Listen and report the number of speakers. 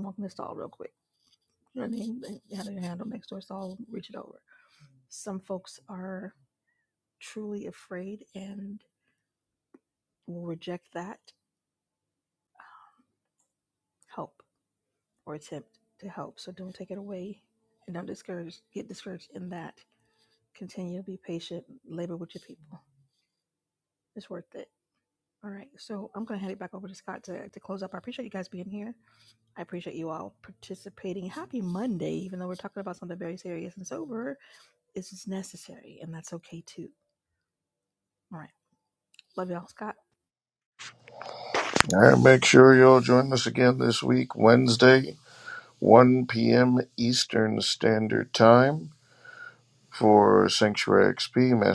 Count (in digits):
2